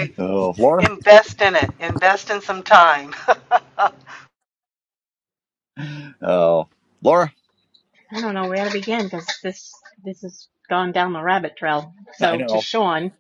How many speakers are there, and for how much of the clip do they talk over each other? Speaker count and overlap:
three, about 4%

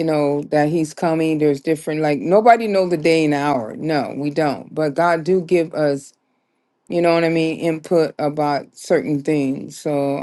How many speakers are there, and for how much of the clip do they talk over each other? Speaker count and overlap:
one, no overlap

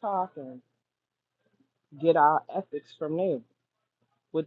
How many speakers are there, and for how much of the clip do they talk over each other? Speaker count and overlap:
one, no overlap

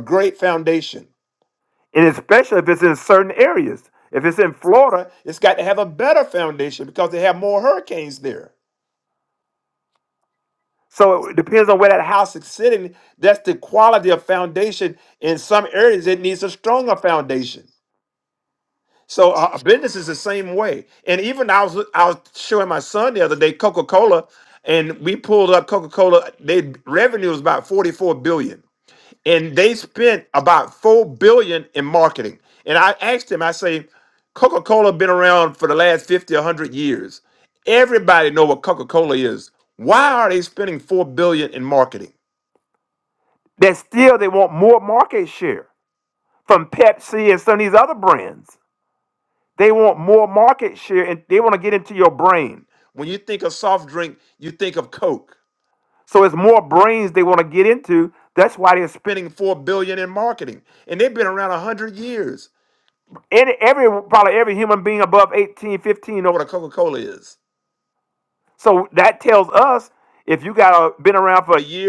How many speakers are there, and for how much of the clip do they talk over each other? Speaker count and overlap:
one, no overlap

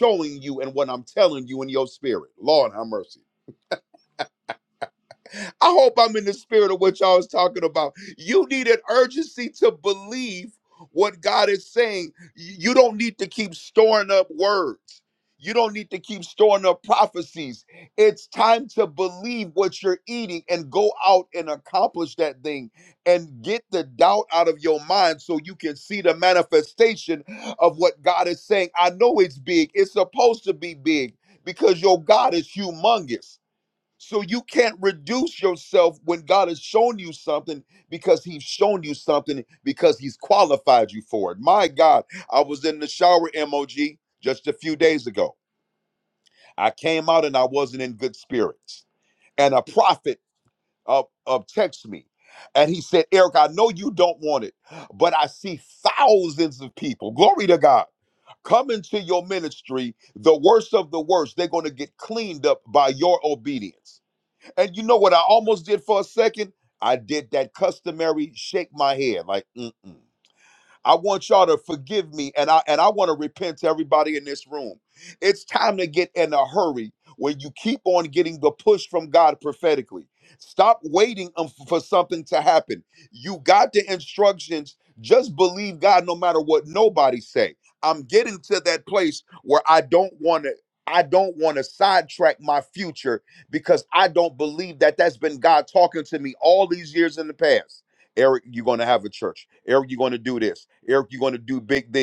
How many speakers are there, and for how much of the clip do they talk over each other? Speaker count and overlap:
one, no overlap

